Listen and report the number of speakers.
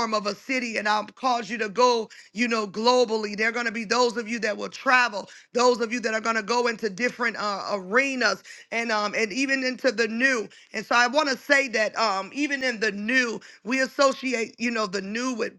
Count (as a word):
one